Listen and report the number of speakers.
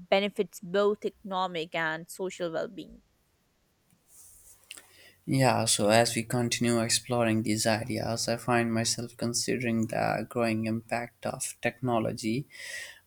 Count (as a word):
two